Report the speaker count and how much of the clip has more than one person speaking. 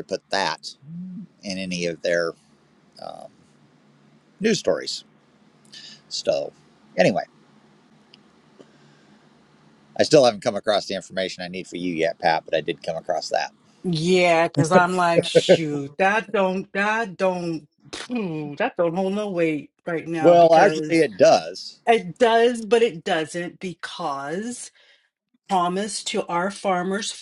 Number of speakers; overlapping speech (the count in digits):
2, about 3%